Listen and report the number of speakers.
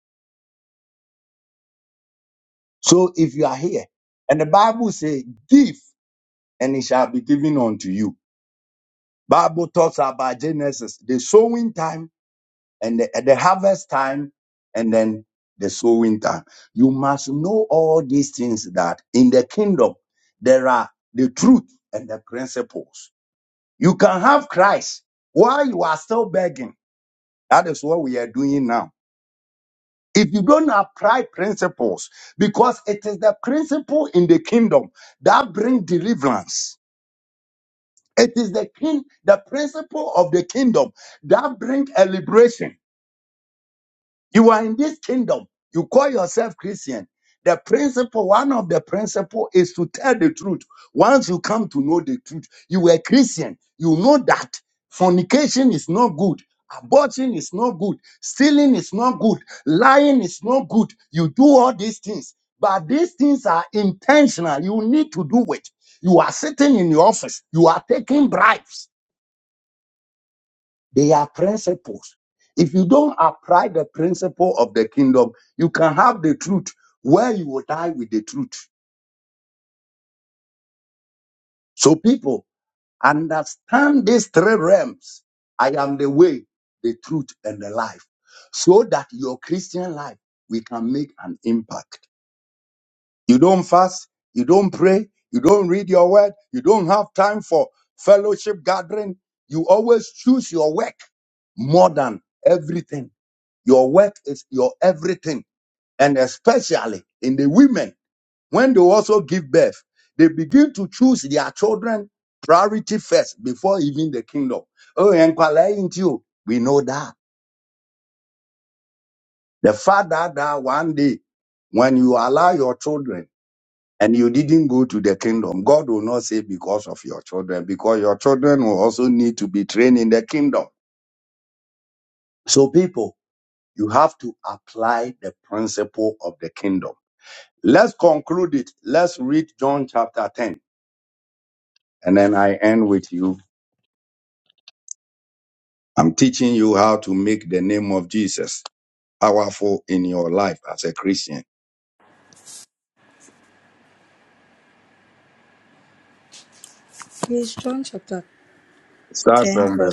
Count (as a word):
two